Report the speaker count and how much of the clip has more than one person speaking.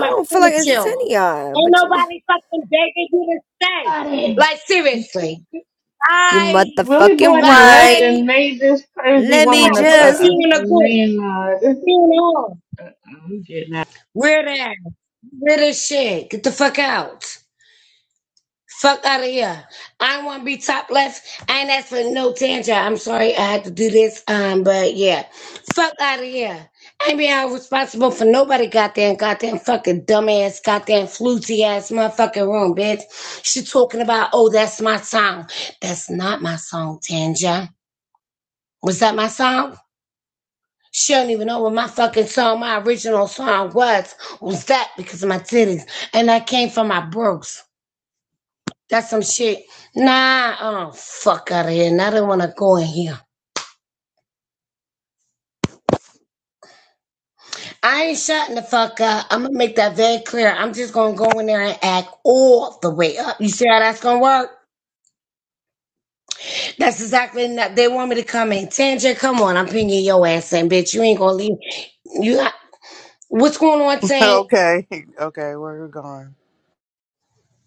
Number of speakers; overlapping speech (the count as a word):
four, about 7%